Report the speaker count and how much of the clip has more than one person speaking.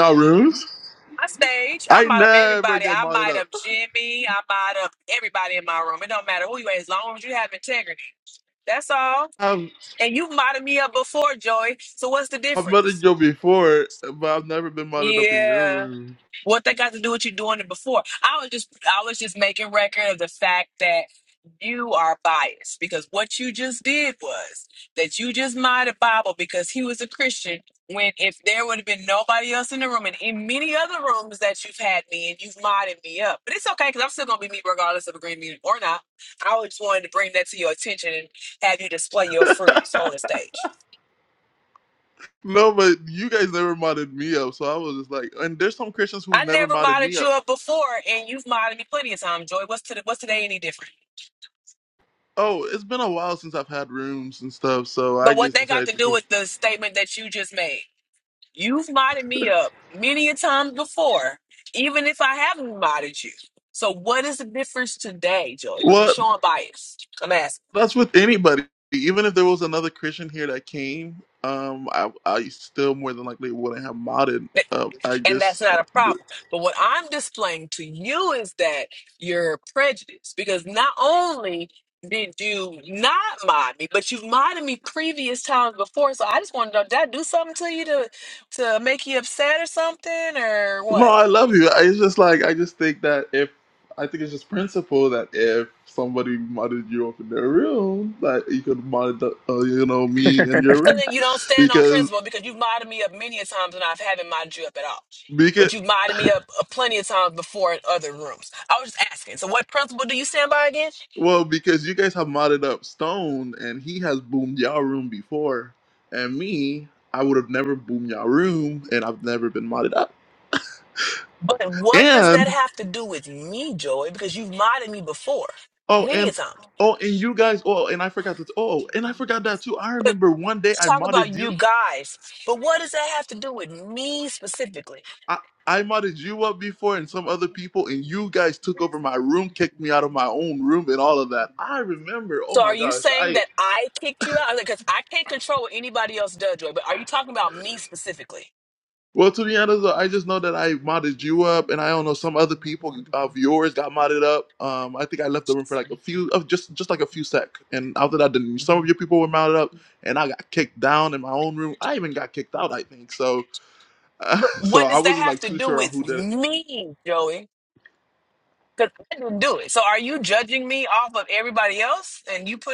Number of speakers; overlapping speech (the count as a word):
two, about 7%